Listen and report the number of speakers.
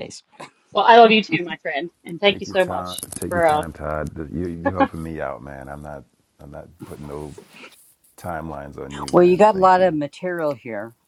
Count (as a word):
three